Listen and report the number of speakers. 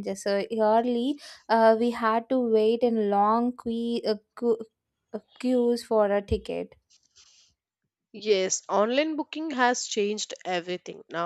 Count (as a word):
two